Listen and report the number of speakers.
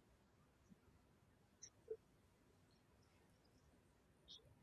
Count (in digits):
0